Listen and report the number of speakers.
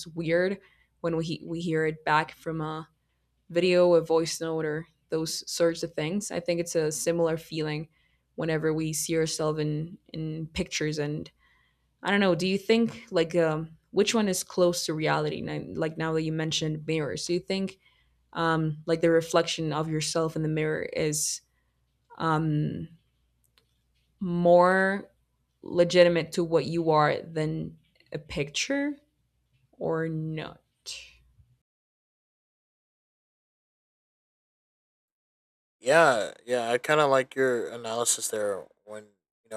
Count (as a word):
two